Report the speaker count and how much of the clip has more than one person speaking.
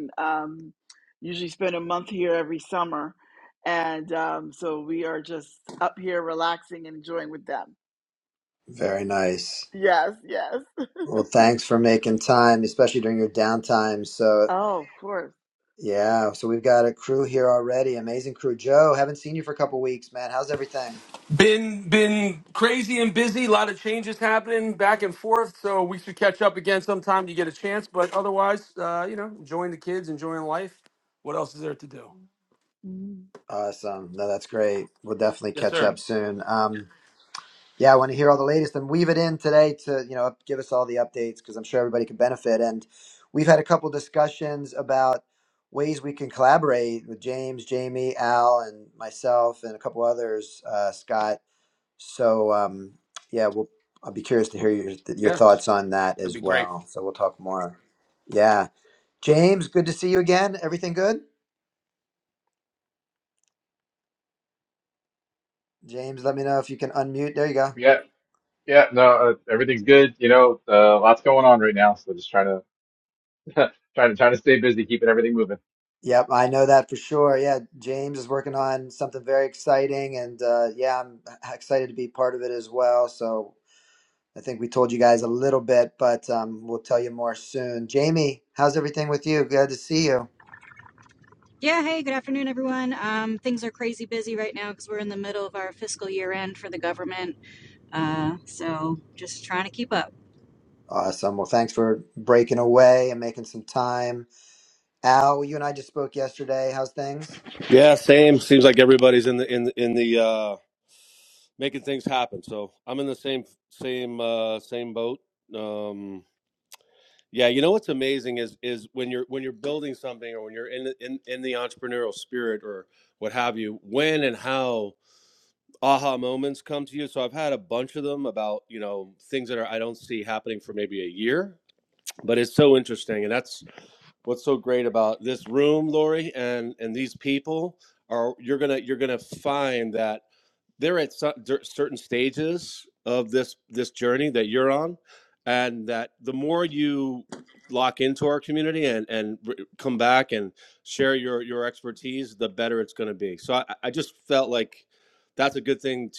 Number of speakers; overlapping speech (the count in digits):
6, about 1%